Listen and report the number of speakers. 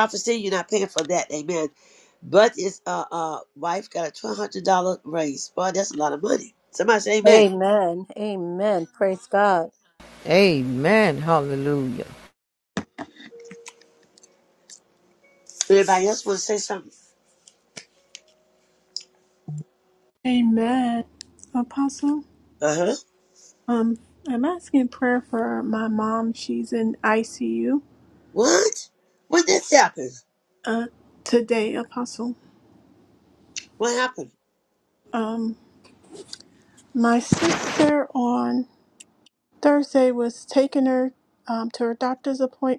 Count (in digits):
4